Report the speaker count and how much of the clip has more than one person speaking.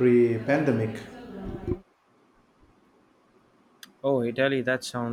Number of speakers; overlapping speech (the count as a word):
two, no overlap